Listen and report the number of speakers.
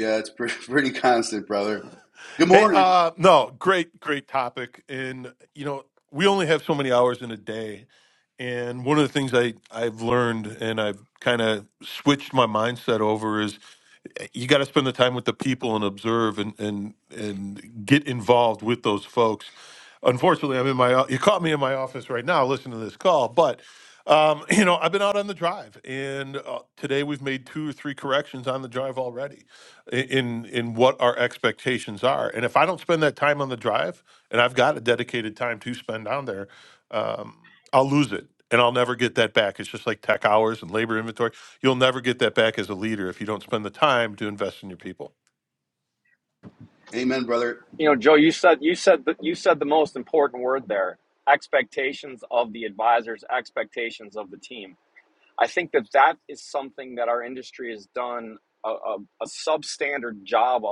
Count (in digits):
3